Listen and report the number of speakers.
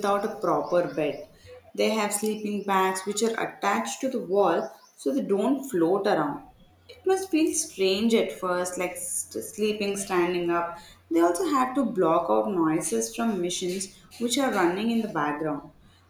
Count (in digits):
1